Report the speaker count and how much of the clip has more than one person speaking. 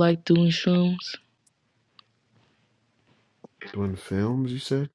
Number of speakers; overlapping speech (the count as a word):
two, no overlap